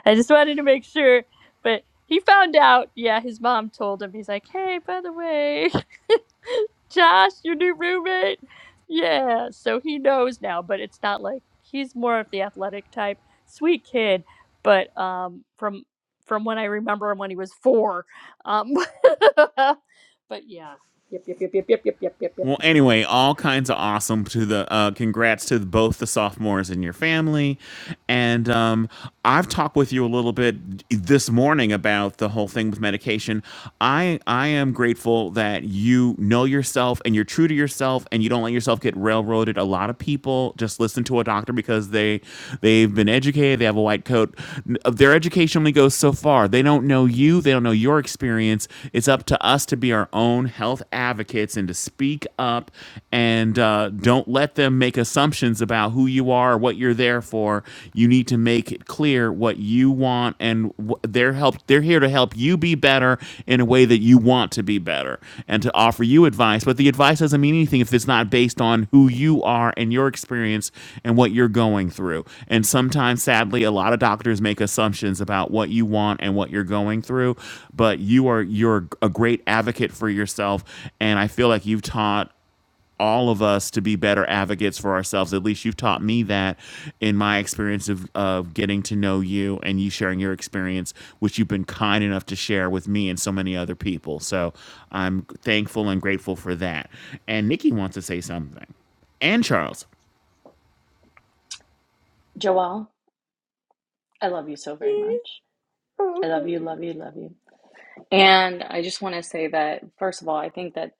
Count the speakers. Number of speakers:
three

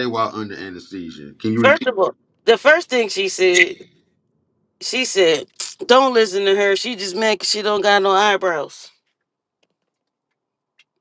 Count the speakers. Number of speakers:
two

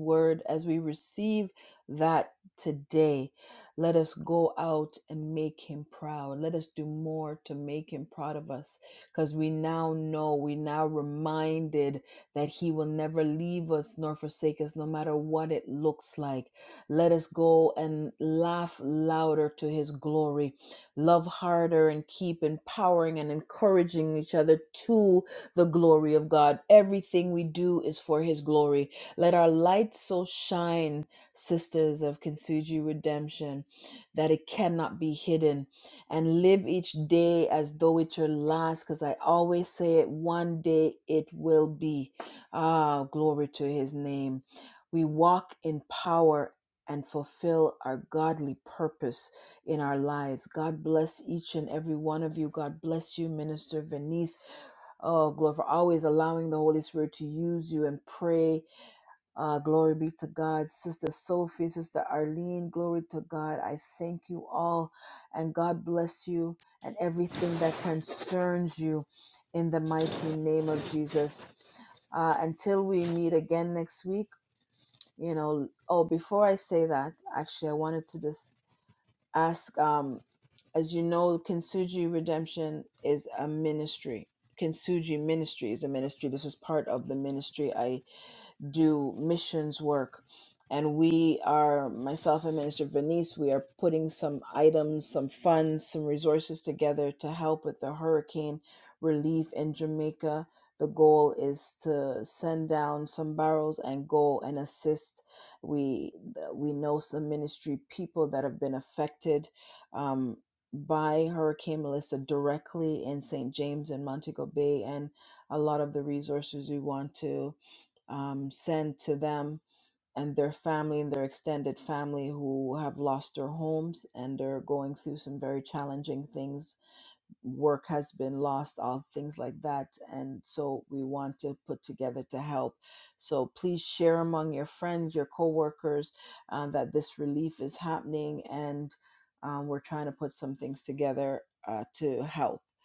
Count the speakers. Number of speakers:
one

